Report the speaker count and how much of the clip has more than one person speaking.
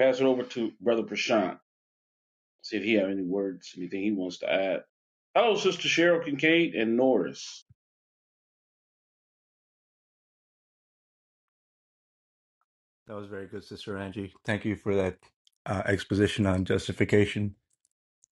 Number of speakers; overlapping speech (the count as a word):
two, no overlap